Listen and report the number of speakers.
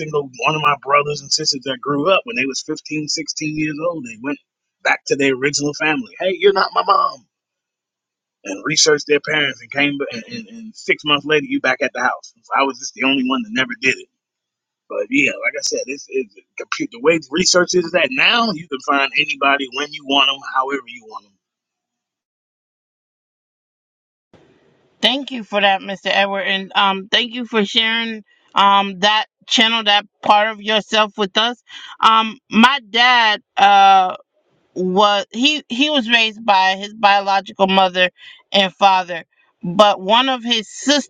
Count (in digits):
2